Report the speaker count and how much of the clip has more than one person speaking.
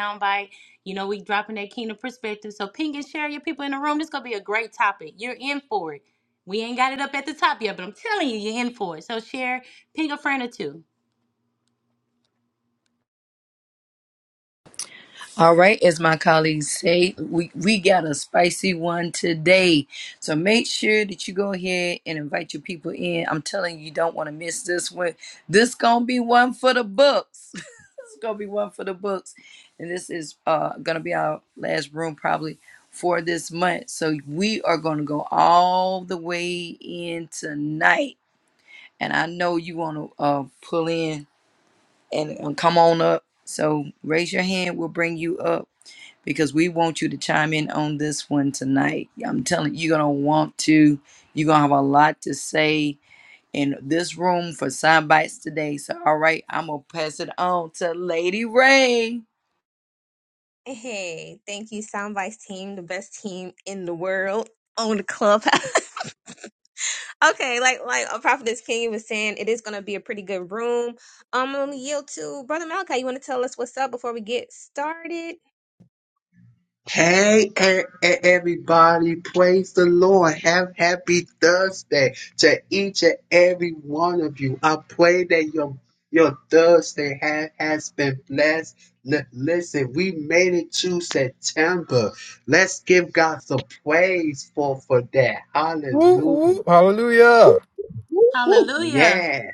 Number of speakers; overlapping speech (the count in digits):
5, about 1%